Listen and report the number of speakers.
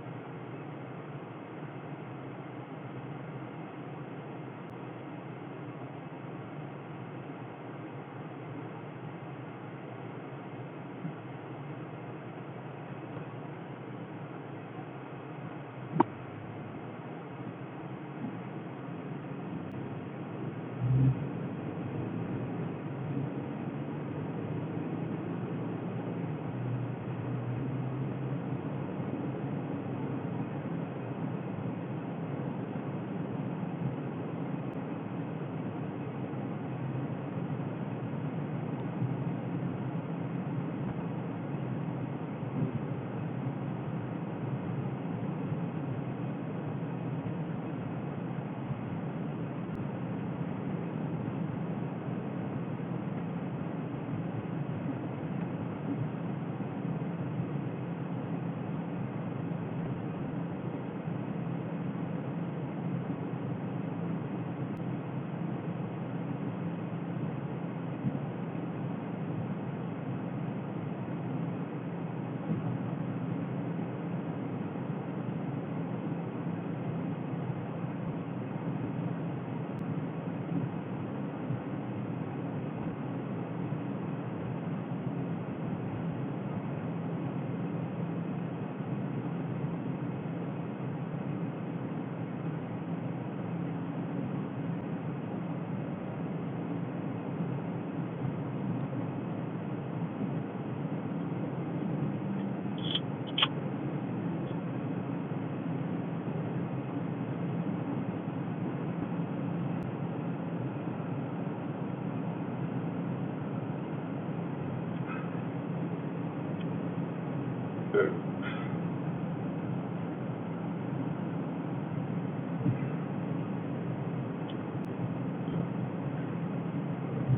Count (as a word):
zero